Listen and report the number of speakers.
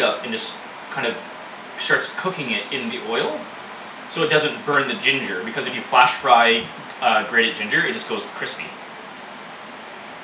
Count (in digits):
1